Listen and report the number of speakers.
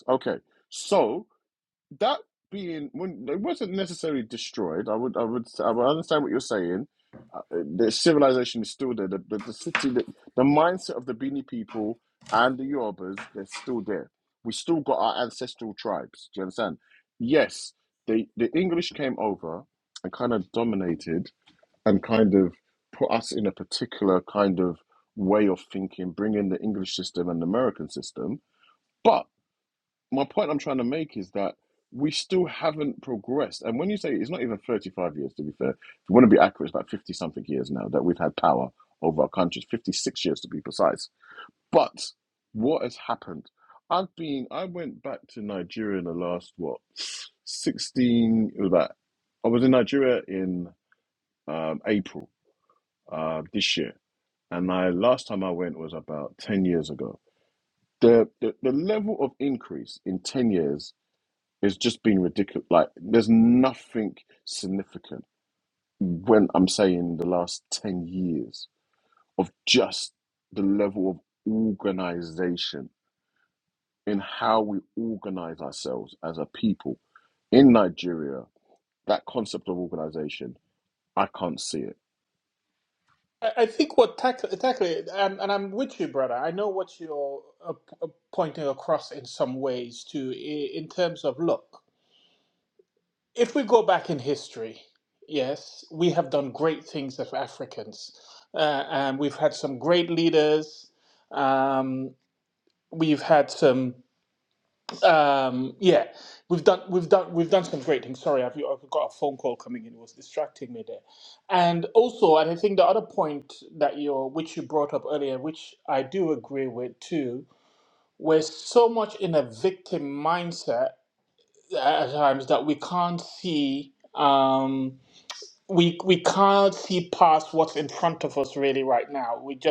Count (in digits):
2